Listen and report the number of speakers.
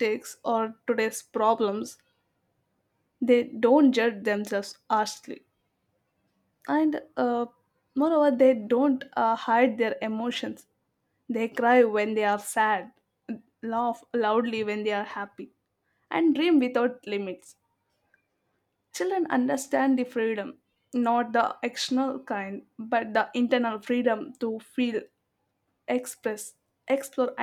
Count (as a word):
one